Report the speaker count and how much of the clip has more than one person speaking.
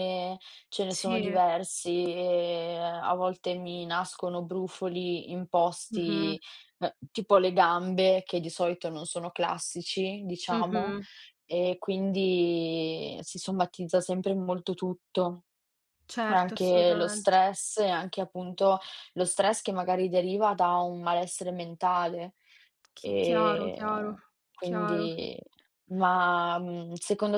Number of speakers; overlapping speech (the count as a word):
two, about 14%